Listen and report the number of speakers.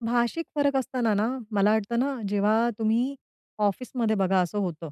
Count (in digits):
1